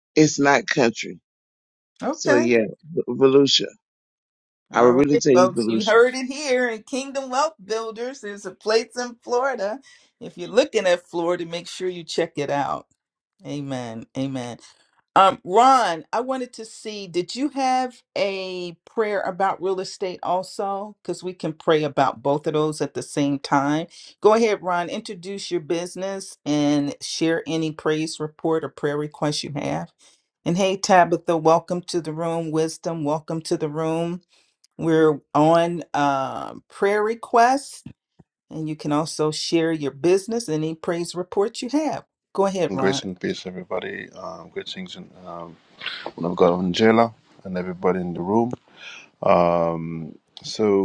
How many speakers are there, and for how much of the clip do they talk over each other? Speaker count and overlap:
3, about 3%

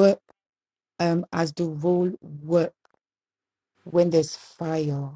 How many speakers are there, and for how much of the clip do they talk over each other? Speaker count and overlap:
1, no overlap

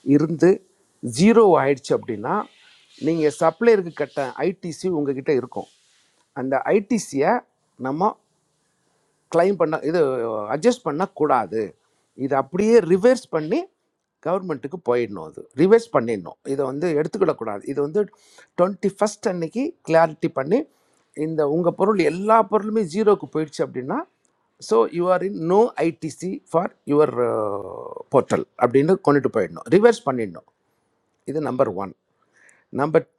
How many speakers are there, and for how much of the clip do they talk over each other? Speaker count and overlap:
1, no overlap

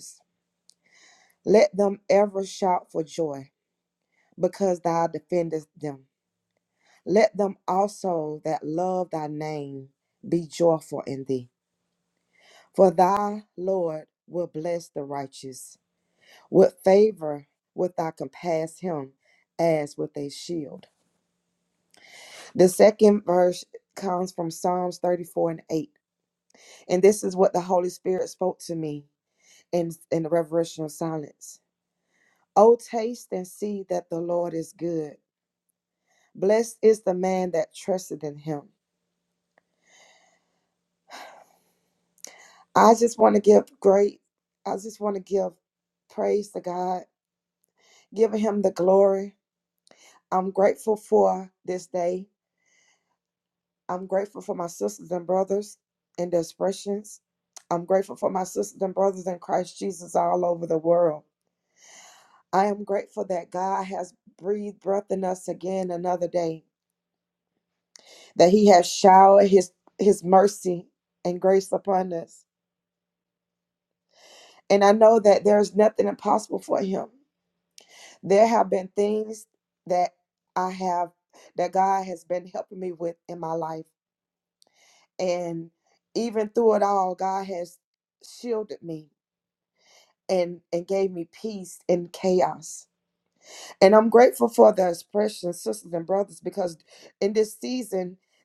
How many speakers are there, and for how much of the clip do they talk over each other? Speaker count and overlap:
1, no overlap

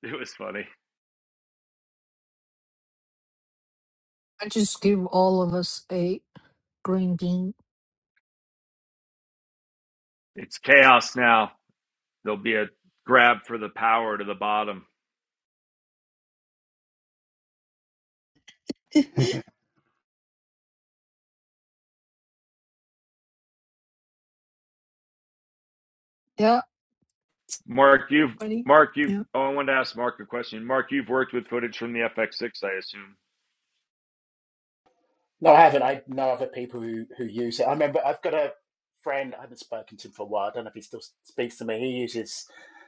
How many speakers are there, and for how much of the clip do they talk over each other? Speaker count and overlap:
3, under 1%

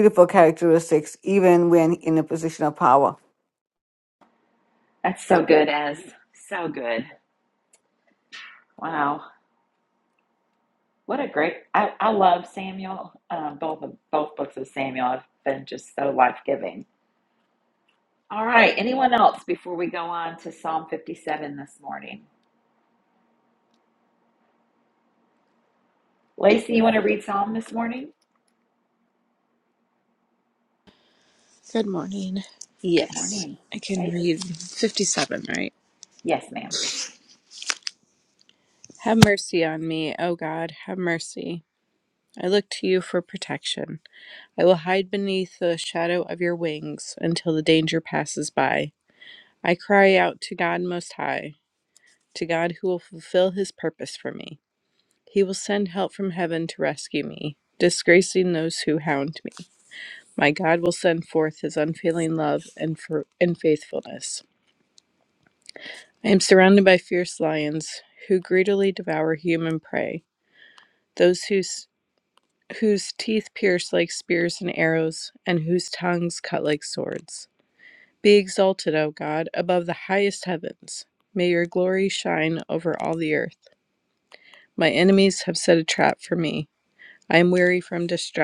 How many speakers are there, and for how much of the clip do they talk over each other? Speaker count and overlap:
3, about 1%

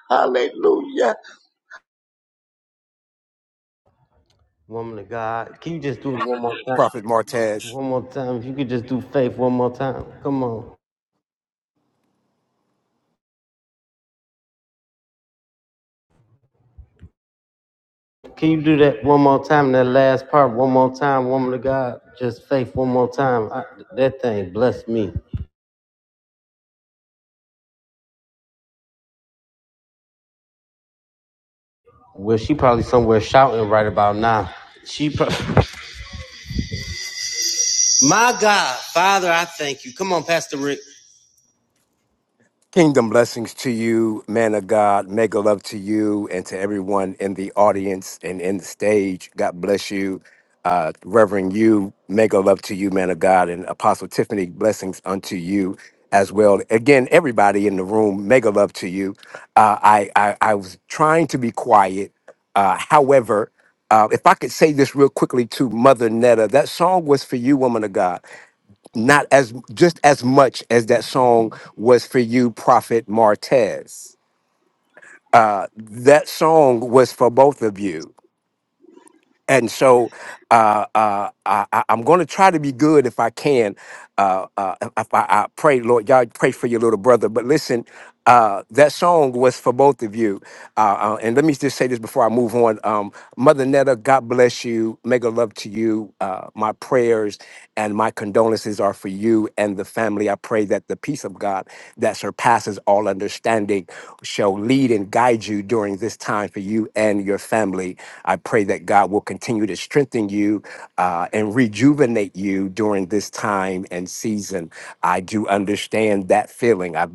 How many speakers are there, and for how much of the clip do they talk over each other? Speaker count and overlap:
3, under 1%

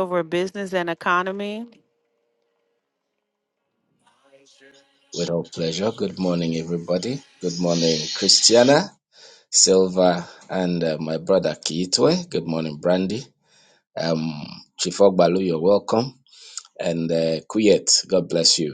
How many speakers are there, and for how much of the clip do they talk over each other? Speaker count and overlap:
2, no overlap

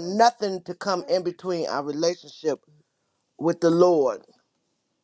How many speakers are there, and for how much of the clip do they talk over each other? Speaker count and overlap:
1, no overlap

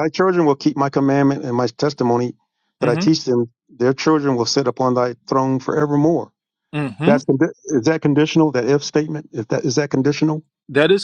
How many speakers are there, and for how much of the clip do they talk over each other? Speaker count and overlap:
2, about 4%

